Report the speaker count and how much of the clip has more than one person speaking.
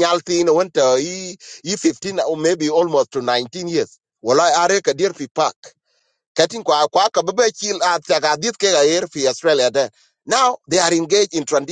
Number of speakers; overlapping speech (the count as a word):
one, no overlap